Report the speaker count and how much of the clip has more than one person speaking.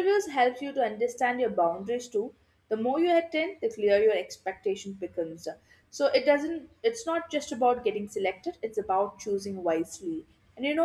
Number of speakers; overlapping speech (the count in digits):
1, no overlap